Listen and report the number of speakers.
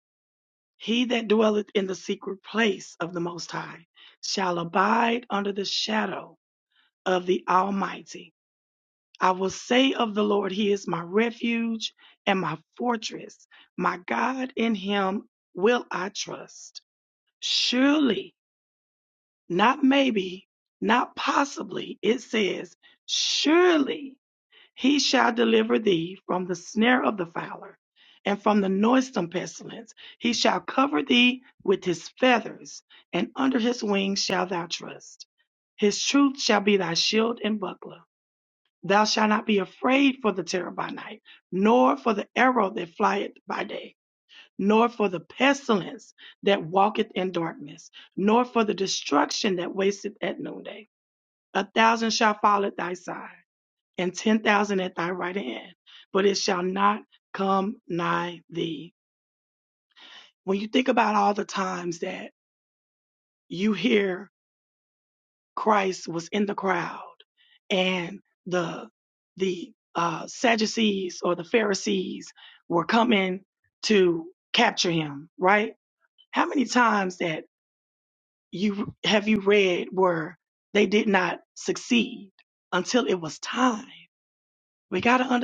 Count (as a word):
one